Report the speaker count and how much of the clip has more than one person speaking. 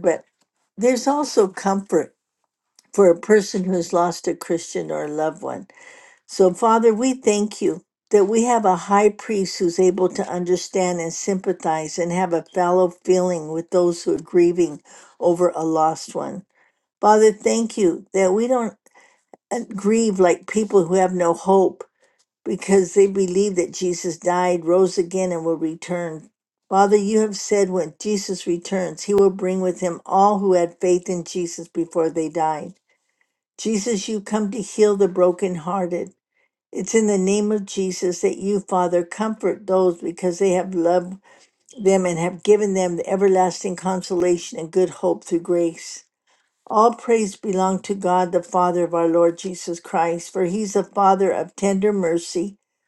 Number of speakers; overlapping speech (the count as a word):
one, no overlap